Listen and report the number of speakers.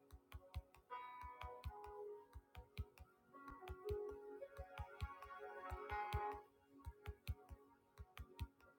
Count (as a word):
zero